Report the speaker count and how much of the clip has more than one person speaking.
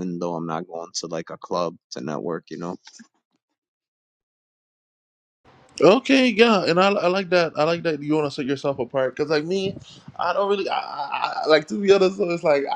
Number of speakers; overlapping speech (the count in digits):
2, no overlap